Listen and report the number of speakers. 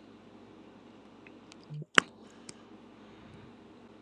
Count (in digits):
0